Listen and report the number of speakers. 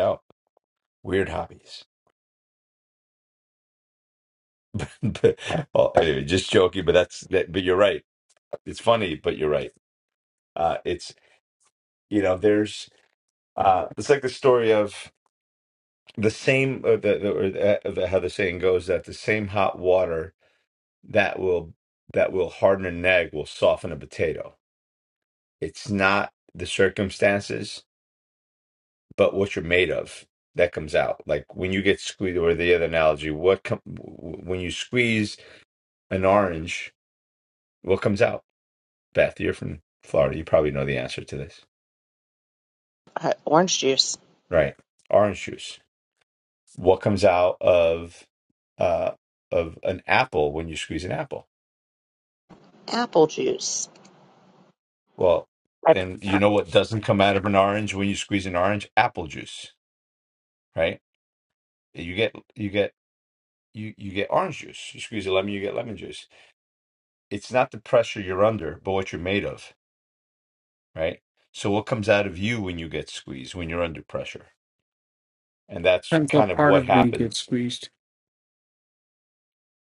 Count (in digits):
3